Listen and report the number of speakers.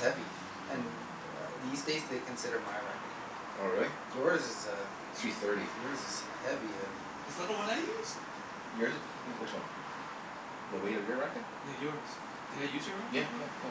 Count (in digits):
3